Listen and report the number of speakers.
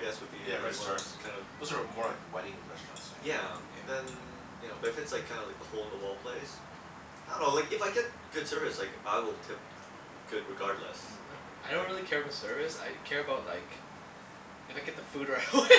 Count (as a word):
three